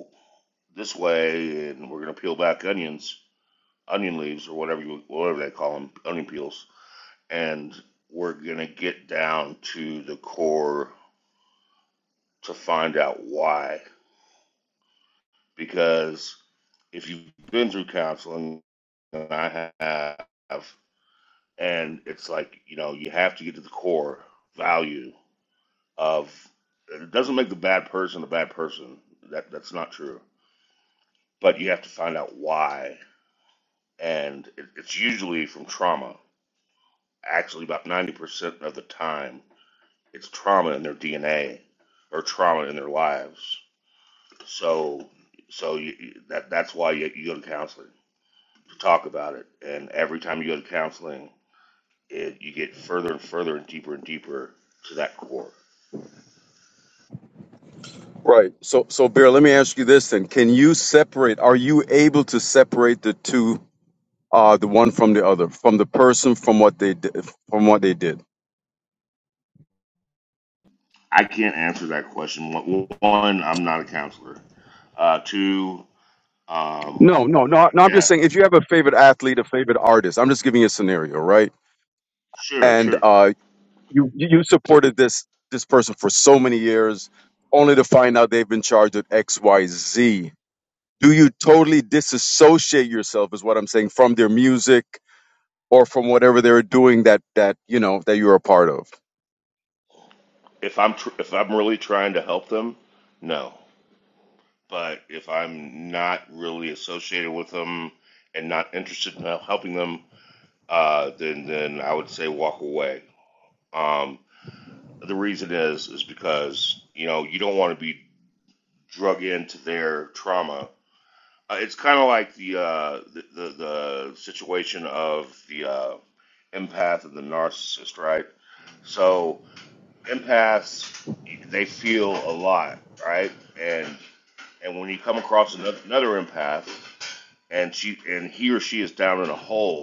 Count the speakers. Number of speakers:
two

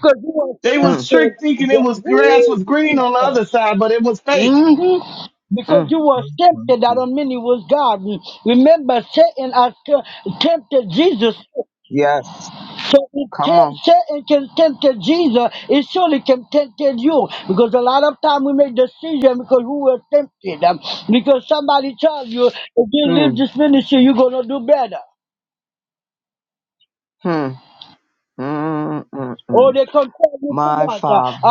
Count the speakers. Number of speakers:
three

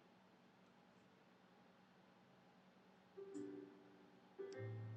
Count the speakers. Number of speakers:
zero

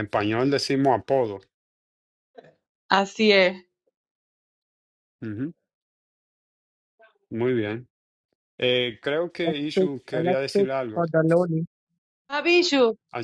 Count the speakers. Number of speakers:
three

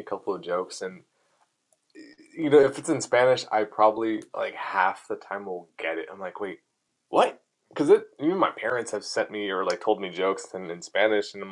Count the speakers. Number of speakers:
one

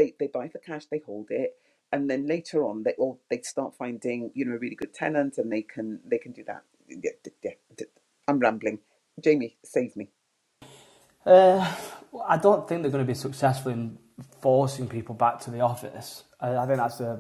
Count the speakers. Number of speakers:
two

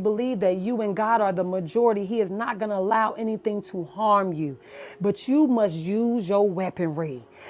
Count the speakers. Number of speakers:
one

